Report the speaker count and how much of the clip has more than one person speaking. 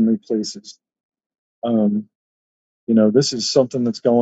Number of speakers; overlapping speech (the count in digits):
1, no overlap